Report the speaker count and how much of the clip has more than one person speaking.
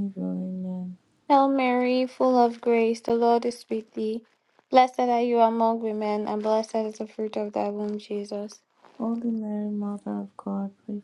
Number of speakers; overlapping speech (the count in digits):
2, no overlap